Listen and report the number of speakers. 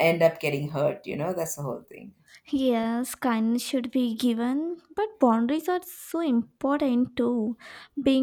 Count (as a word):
two